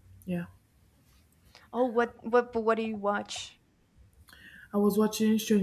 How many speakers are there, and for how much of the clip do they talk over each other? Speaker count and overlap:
two, no overlap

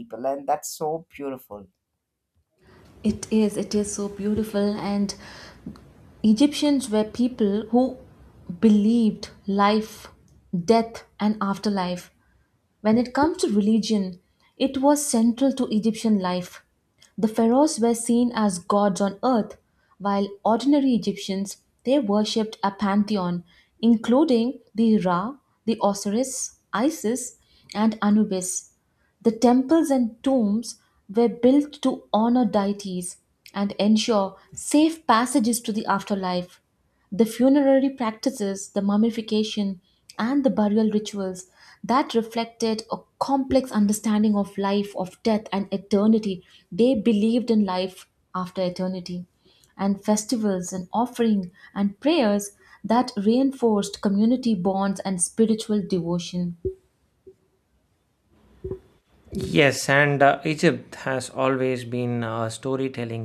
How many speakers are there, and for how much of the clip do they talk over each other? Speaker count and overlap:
three, no overlap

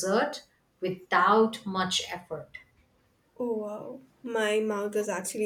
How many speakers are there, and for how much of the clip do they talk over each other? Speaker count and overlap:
two, no overlap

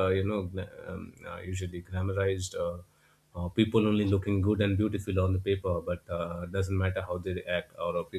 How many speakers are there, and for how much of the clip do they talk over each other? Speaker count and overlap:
one, no overlap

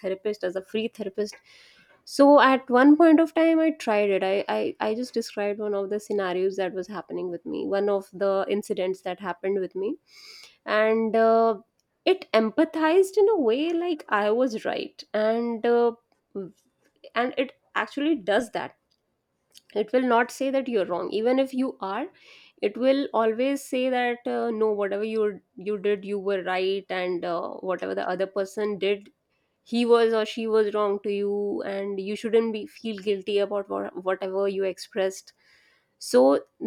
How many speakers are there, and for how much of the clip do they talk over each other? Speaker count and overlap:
one, no overlap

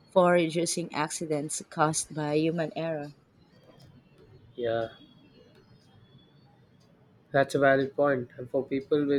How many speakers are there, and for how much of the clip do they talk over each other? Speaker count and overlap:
two, no overlap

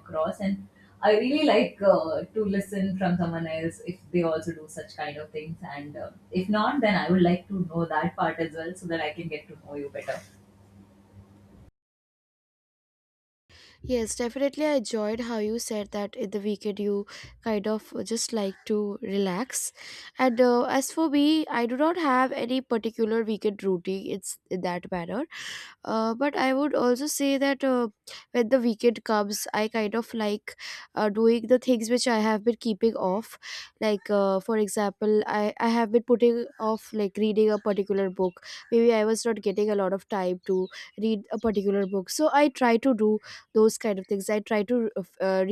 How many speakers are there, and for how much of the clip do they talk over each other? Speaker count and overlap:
two, no overlap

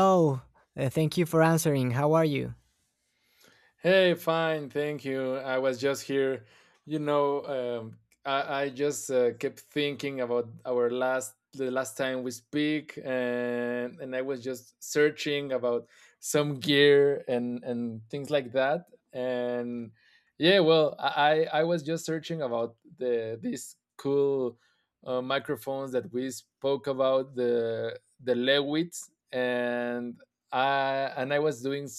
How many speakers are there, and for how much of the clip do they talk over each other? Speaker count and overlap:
two, no overlap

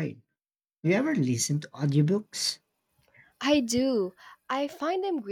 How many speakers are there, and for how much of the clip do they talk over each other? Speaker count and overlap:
two, no overlap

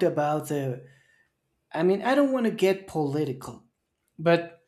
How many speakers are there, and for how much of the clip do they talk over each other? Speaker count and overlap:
one, no overlap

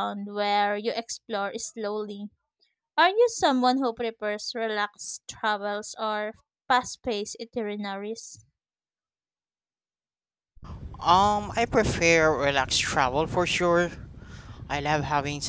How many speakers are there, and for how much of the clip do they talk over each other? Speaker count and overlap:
two, no overlap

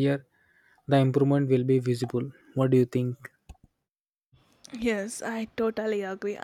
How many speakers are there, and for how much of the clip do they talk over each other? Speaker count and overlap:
two, no overlap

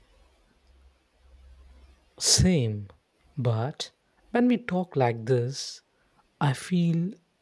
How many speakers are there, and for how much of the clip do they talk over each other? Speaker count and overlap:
one, no overlap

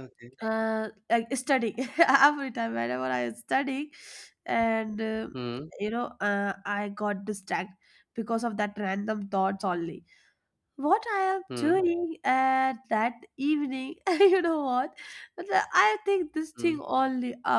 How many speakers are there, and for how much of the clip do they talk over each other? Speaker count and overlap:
two, about 3%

